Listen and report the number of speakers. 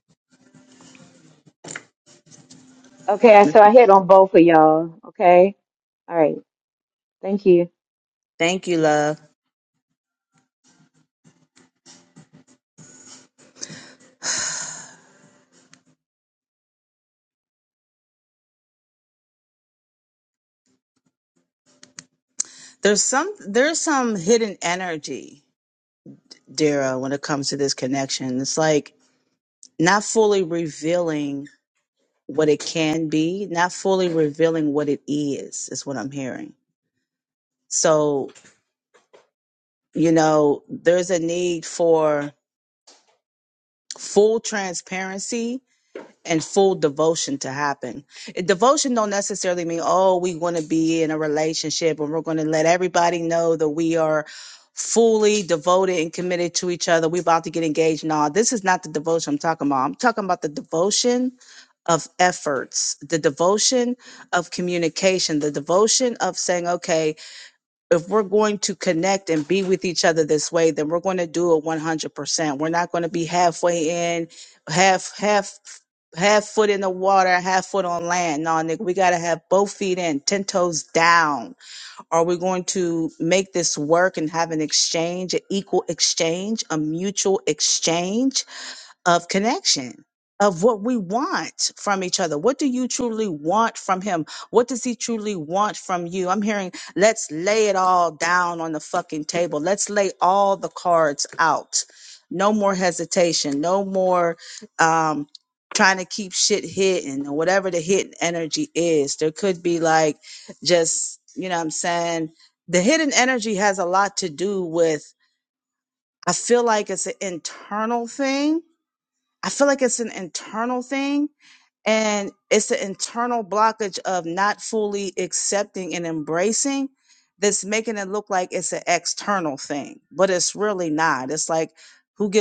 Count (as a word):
two